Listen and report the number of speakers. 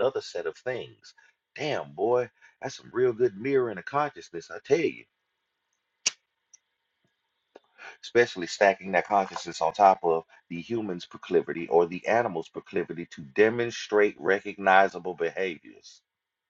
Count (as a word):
one